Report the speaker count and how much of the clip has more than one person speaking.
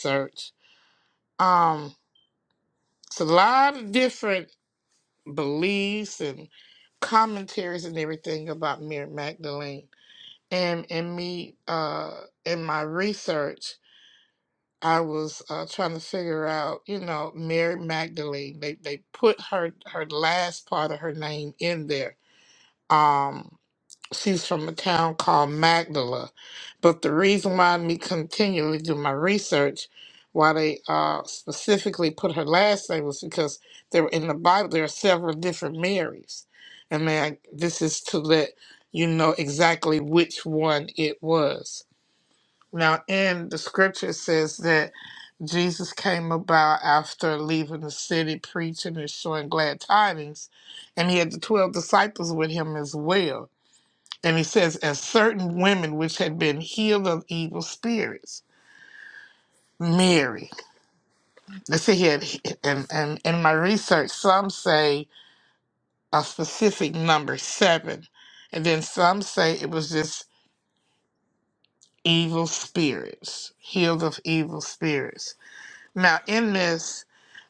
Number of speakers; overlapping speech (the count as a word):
one, no overlap